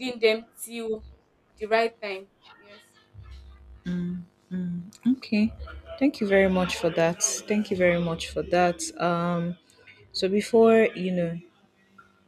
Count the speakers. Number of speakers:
2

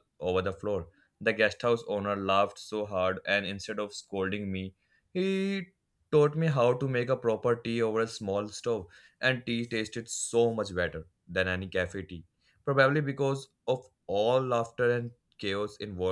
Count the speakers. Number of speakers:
1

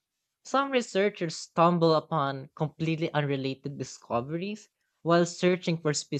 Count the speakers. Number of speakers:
1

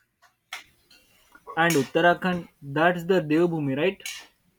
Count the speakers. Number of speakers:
1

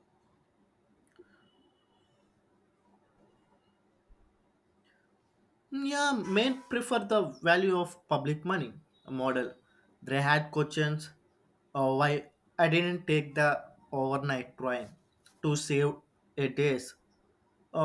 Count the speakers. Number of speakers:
1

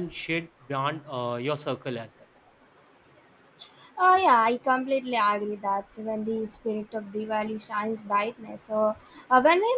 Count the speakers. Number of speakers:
2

